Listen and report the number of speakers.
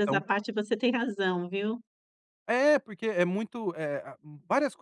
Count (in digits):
2